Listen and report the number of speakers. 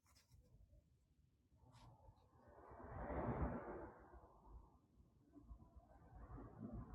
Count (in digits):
0